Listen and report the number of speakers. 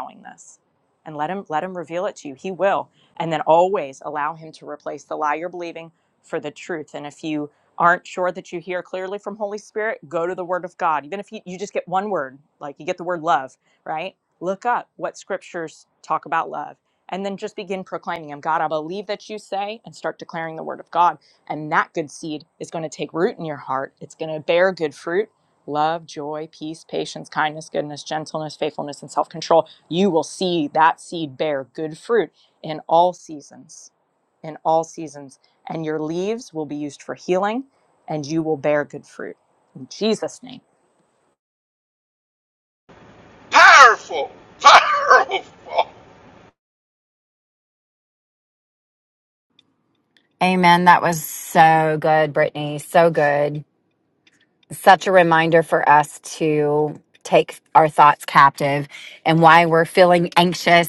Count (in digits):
3